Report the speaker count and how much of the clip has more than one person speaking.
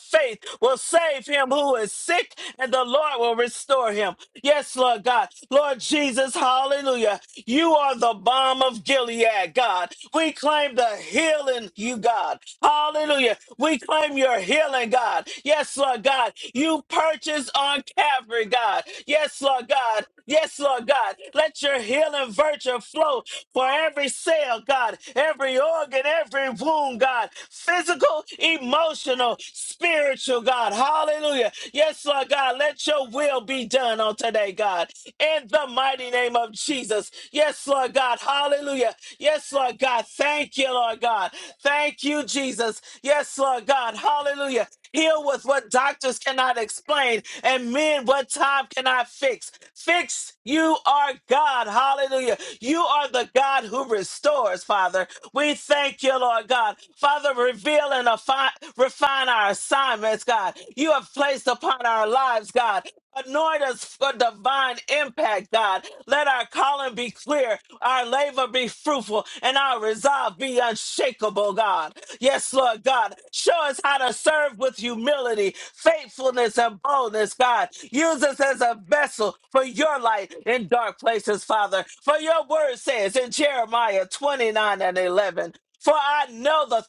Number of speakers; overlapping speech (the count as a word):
one, no overlap